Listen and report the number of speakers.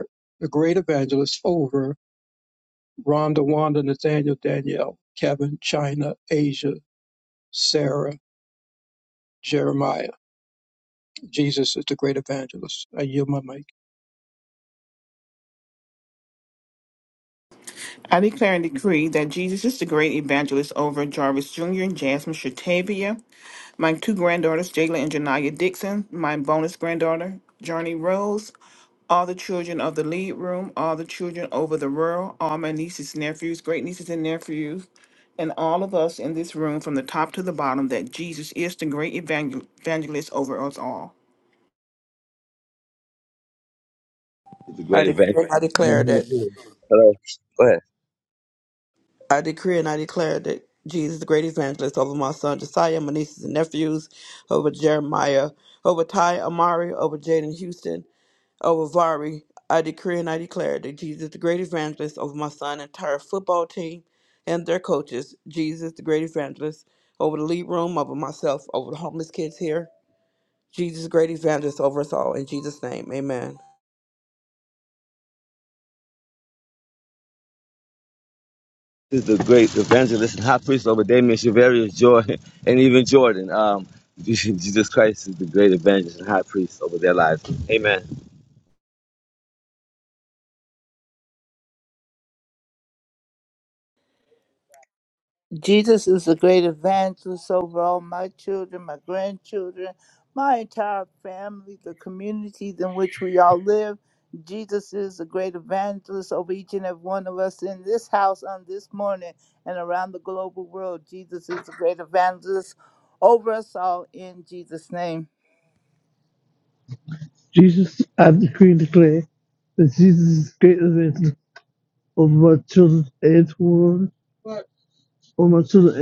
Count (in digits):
6